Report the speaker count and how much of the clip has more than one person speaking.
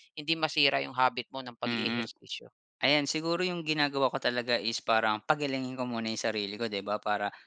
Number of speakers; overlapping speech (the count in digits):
2, about 6%